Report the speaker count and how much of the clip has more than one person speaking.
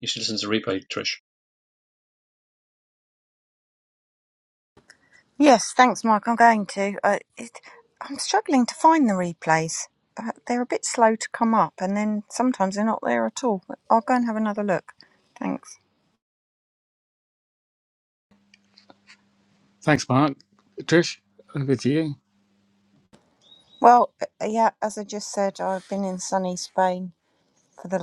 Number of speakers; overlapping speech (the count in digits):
3, no overlap